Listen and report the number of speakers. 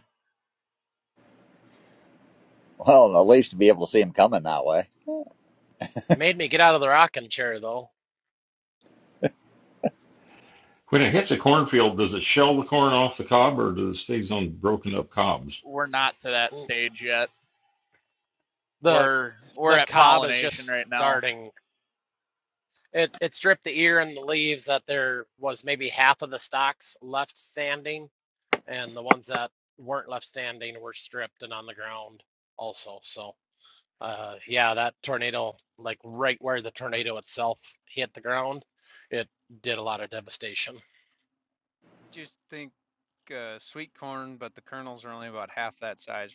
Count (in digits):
5